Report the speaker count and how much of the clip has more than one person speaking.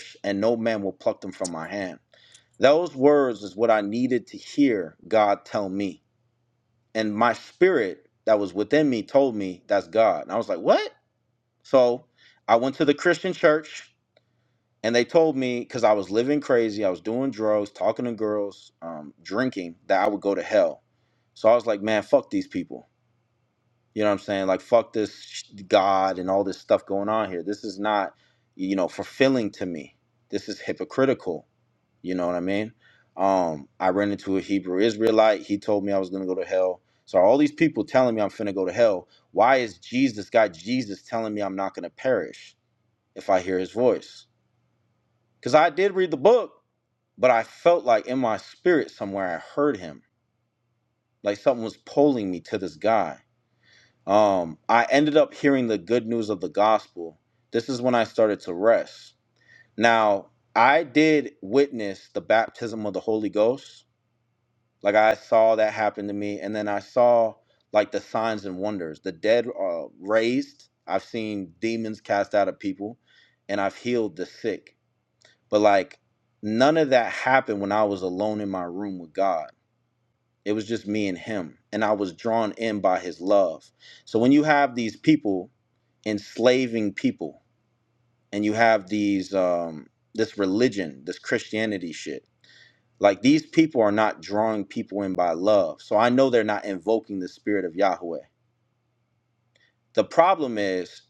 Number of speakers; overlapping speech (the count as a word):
one, no overlap